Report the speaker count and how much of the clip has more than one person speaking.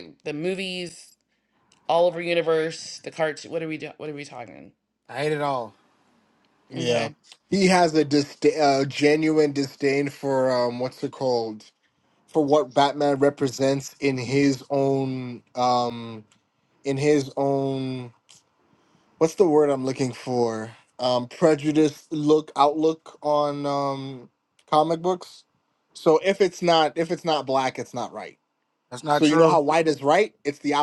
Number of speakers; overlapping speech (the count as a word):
three, about 2%